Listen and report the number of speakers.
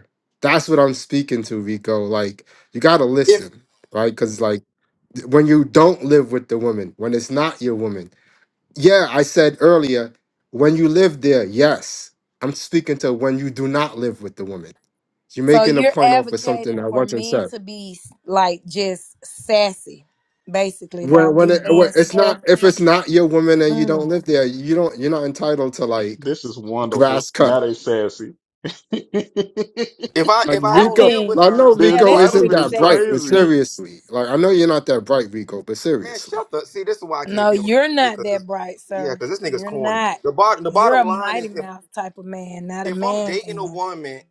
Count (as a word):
four